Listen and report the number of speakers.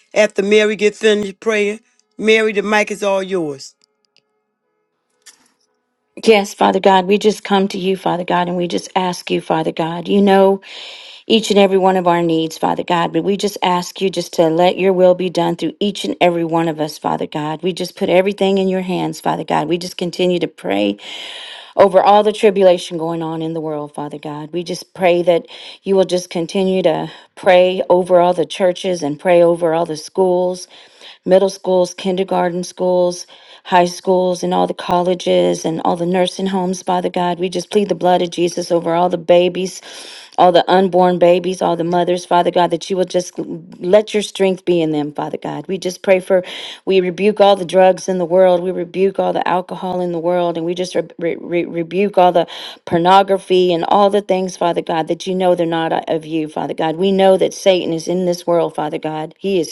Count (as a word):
two